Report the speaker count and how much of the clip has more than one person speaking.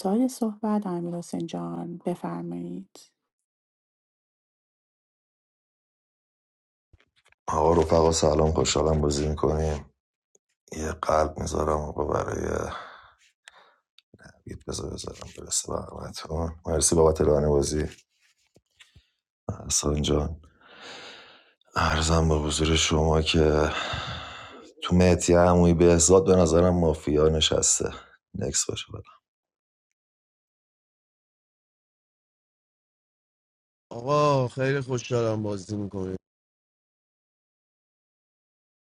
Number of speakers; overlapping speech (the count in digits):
3, no overlap